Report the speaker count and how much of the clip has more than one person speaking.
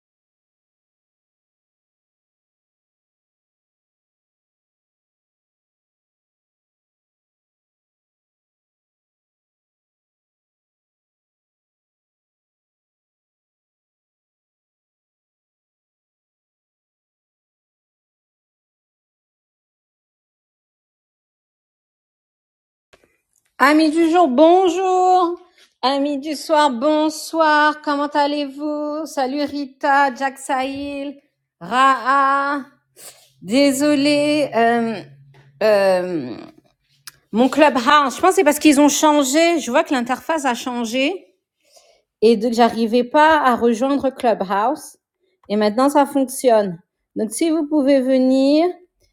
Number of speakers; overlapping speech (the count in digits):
1, no overlap